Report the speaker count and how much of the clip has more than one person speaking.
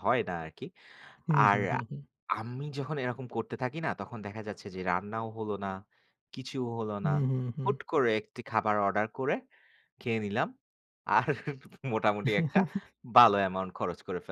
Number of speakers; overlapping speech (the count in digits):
2, about 3%